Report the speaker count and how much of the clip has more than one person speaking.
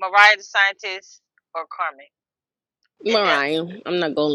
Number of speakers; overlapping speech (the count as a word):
two, about 7%